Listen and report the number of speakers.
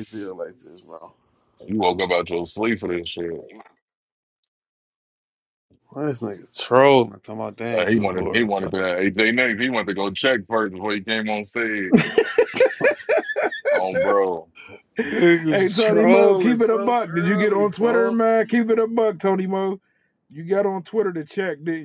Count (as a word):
three